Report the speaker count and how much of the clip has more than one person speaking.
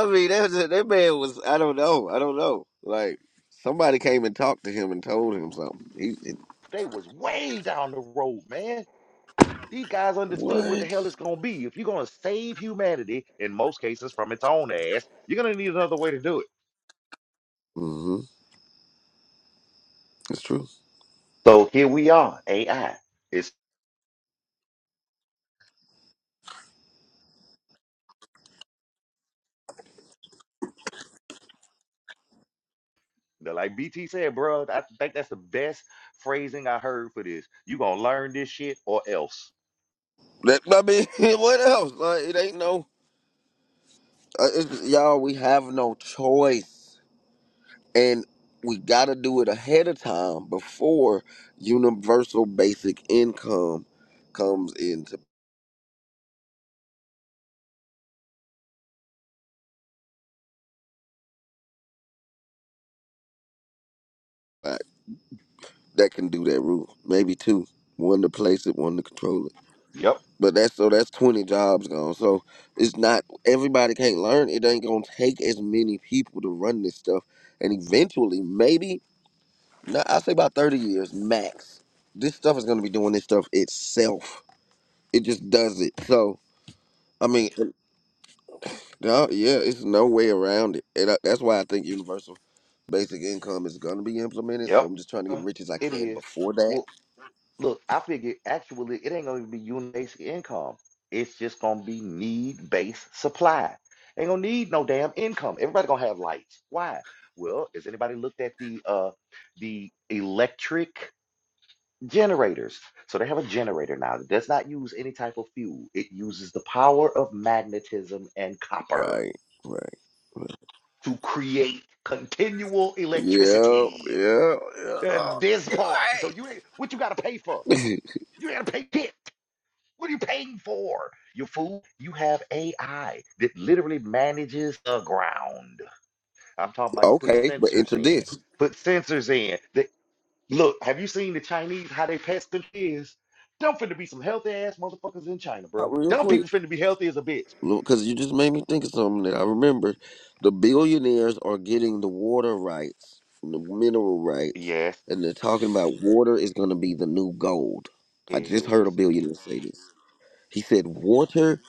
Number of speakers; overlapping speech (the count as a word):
two, about 3%